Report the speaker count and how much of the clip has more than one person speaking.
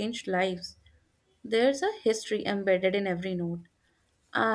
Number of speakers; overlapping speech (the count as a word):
one, no overlap